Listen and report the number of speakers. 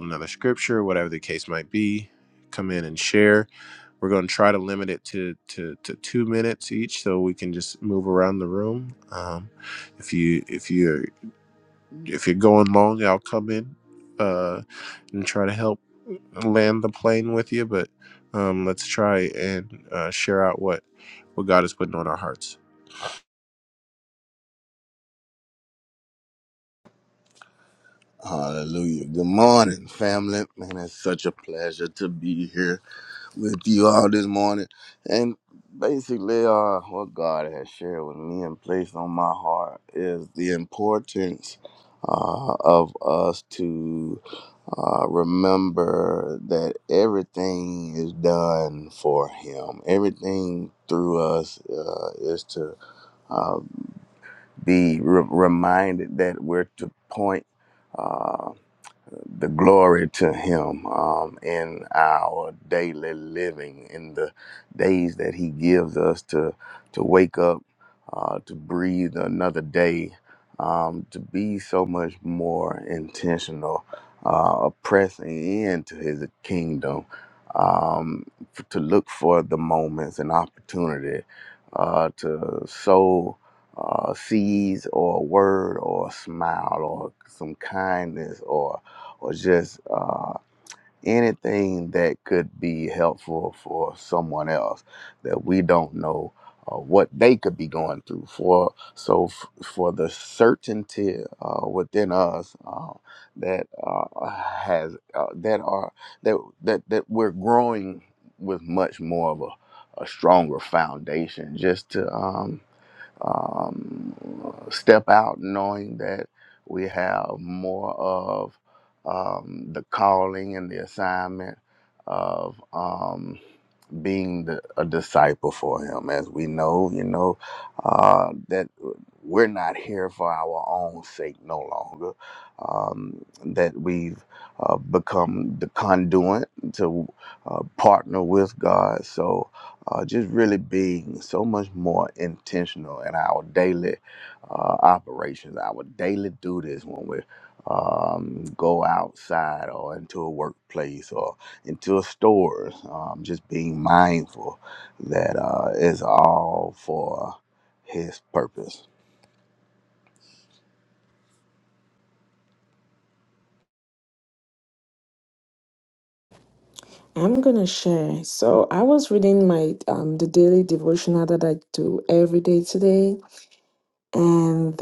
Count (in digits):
3